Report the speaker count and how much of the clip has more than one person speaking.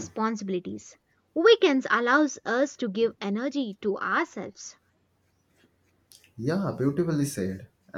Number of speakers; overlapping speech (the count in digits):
2, no overlap